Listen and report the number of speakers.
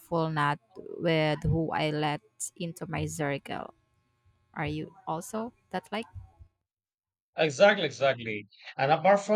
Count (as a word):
two